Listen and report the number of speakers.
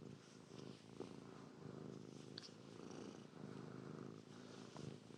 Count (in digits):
0